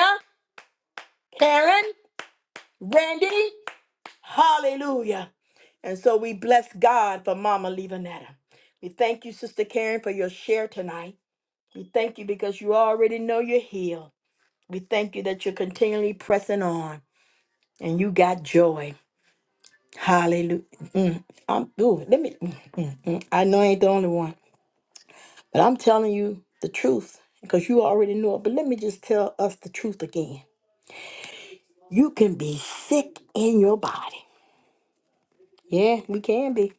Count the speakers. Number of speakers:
one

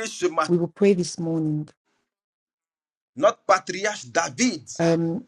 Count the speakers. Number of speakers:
two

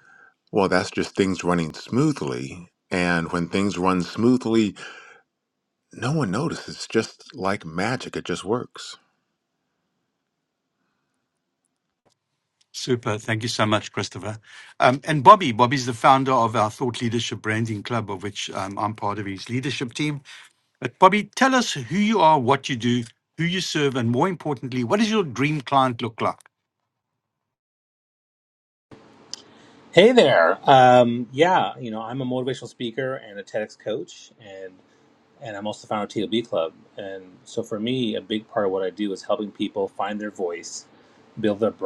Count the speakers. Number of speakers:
three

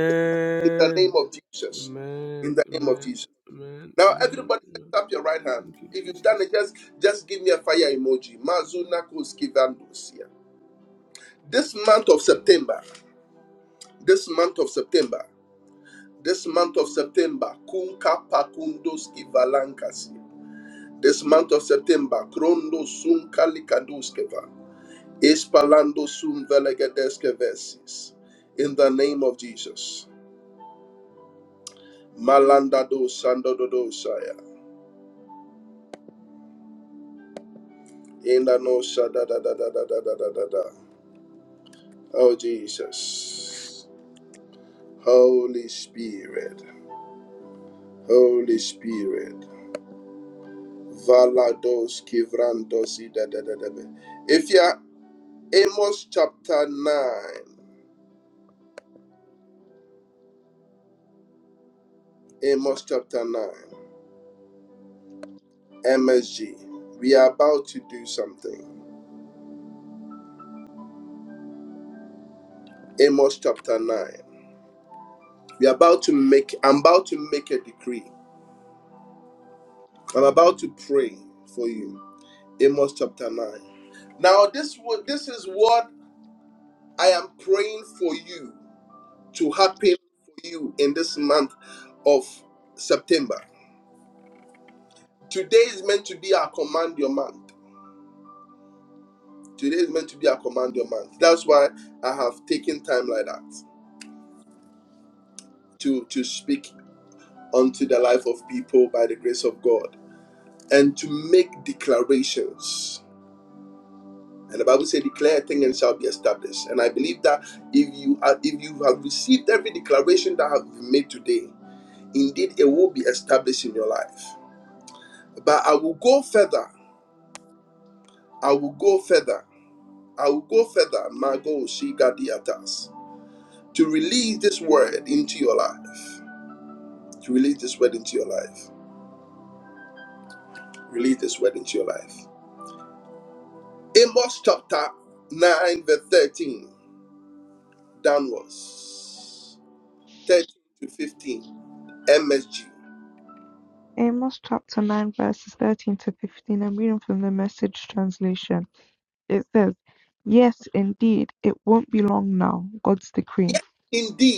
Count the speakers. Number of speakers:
three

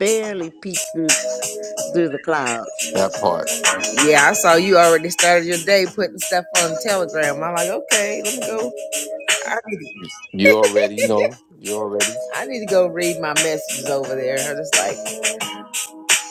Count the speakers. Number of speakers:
three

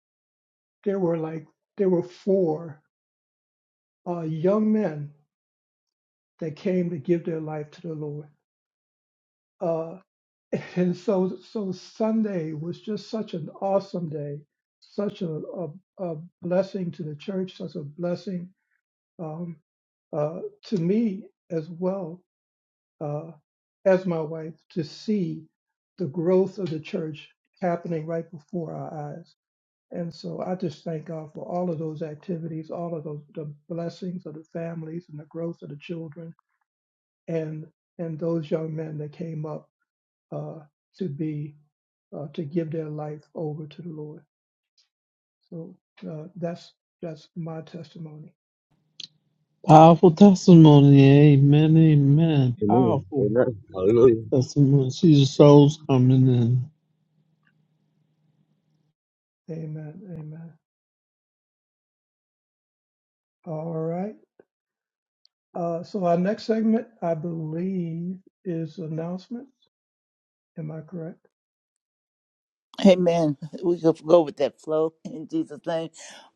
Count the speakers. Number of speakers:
four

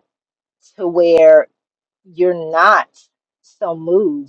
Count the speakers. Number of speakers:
one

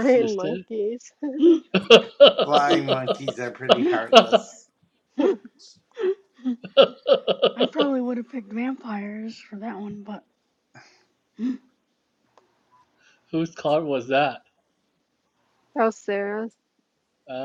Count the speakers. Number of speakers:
four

